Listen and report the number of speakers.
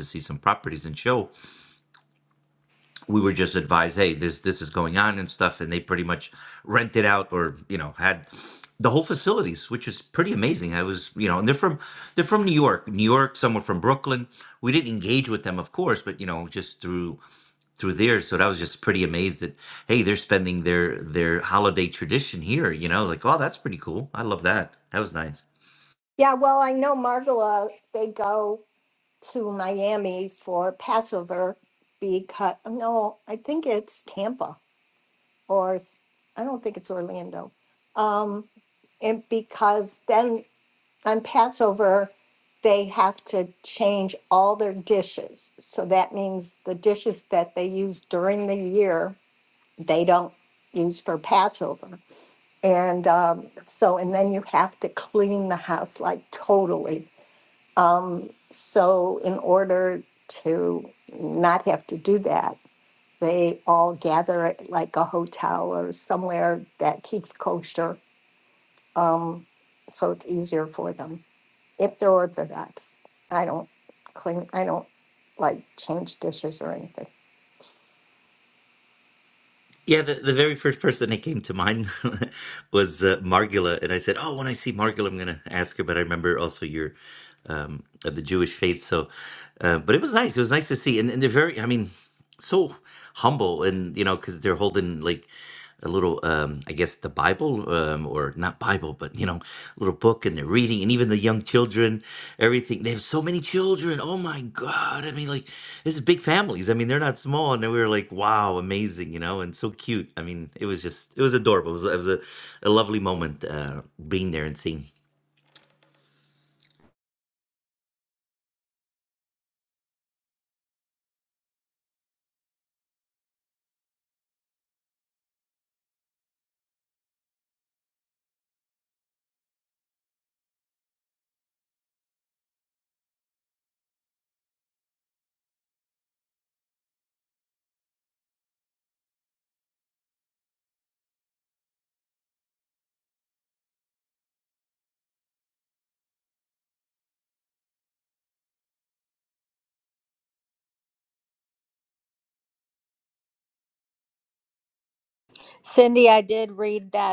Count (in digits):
3